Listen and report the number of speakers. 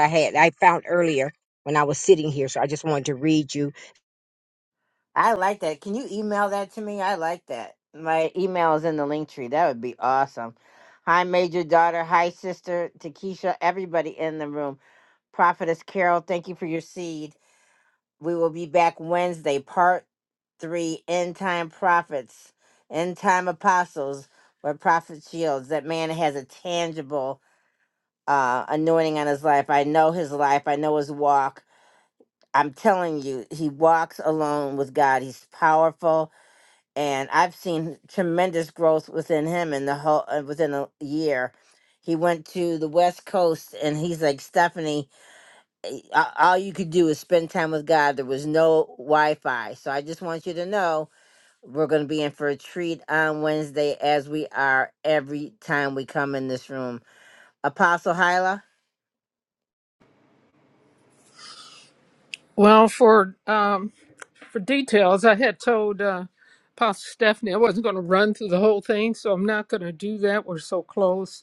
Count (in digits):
3